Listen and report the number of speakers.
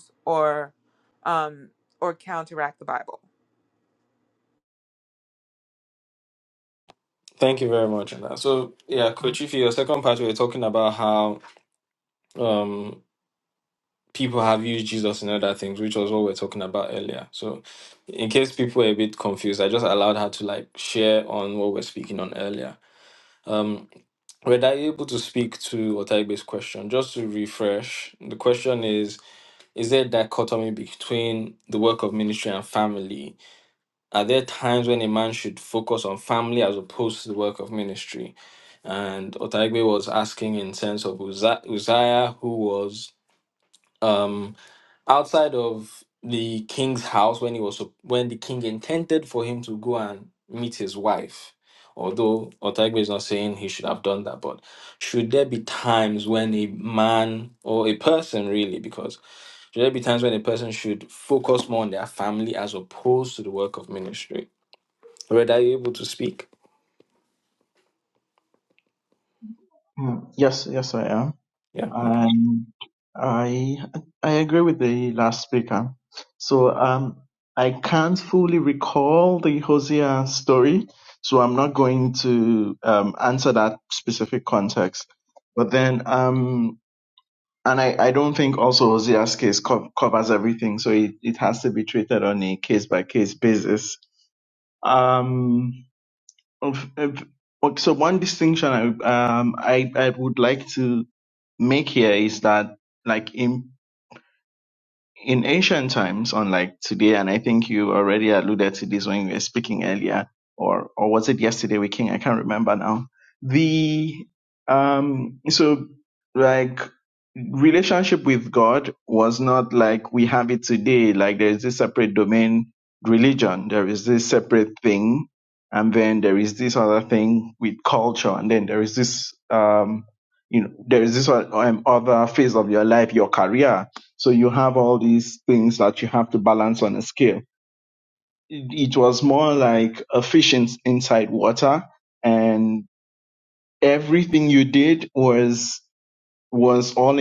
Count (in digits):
3